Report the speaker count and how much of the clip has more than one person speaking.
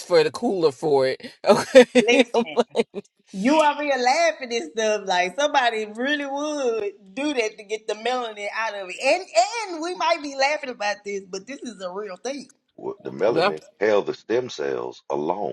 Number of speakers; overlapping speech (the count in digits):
3, no overlap